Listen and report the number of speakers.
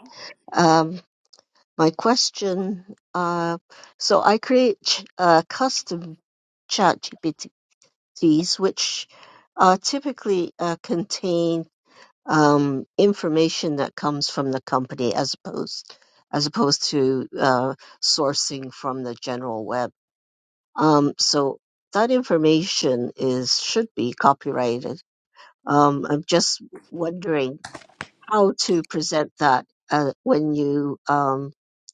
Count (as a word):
one